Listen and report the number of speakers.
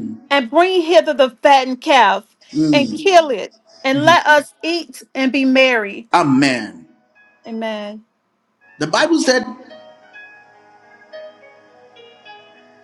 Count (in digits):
2